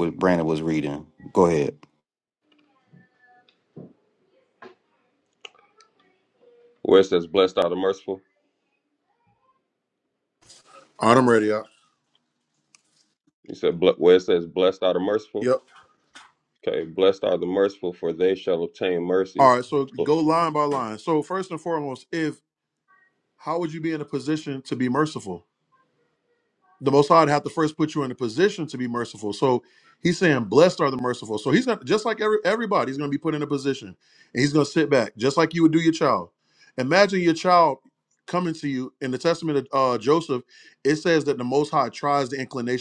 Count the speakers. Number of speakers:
3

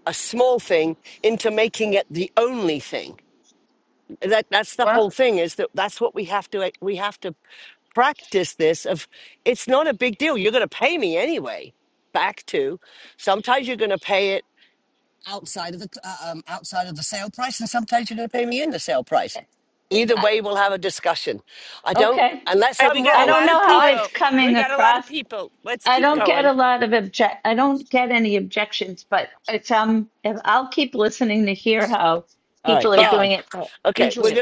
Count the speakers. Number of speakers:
3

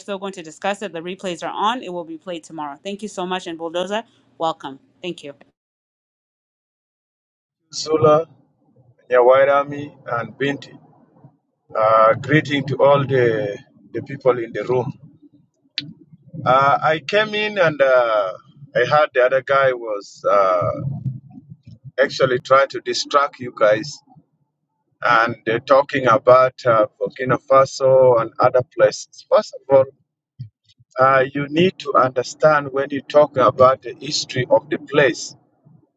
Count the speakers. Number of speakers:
2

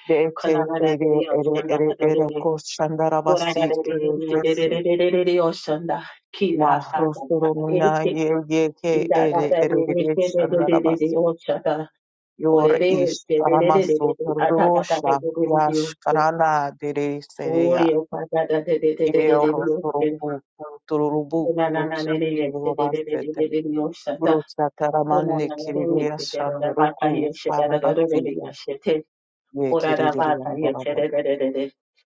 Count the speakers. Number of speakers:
2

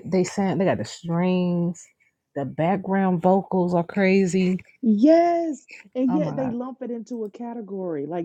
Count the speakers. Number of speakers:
2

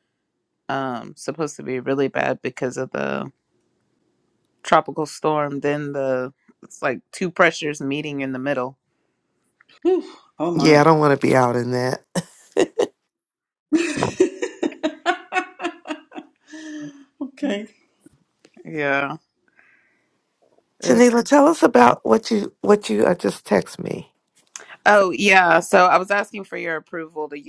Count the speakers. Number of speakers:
3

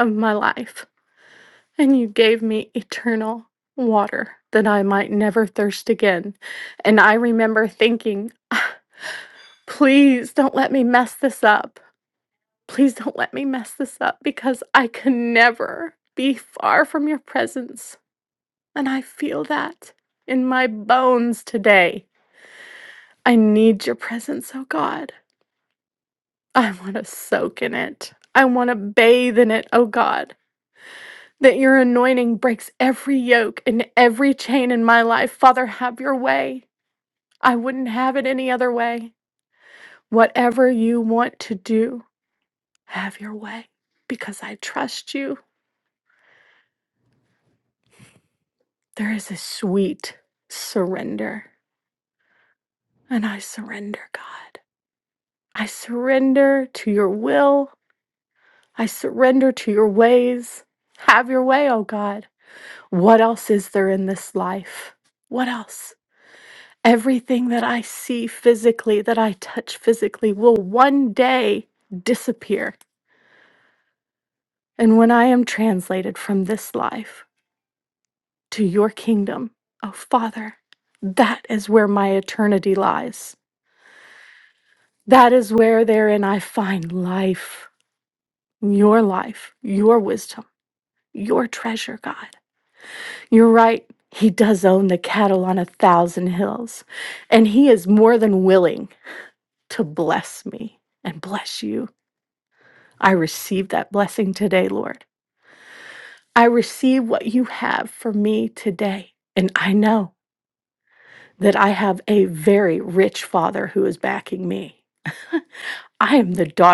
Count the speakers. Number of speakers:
1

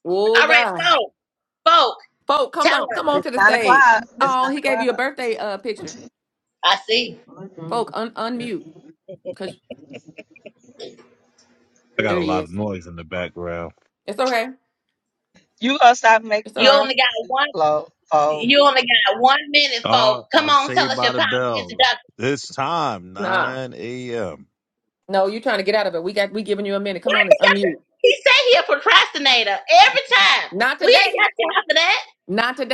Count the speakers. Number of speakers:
4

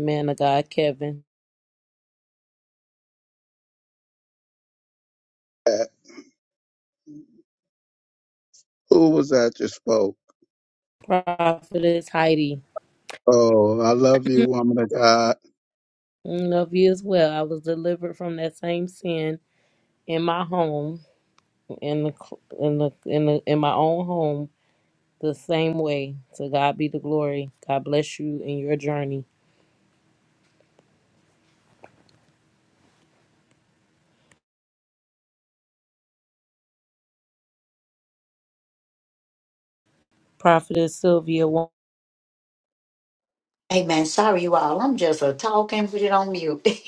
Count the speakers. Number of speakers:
3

